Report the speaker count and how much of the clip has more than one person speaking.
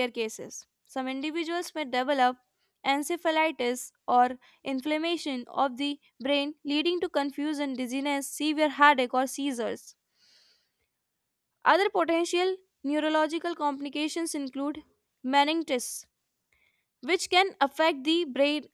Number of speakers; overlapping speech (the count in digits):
1, no overlap